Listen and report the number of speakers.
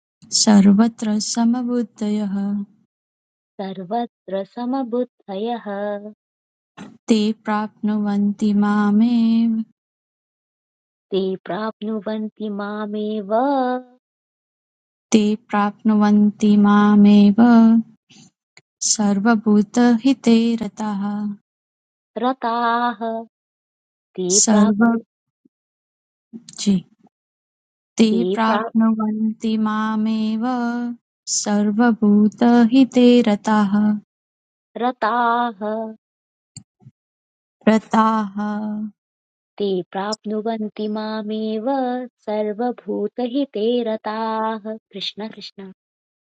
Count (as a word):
two